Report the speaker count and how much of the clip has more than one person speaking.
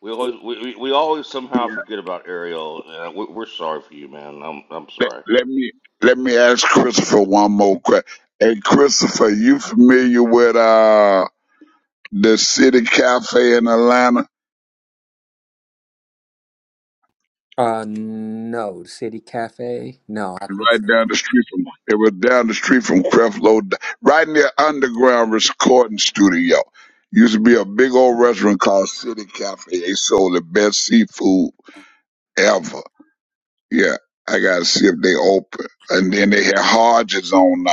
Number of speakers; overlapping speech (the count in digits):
3, about 2%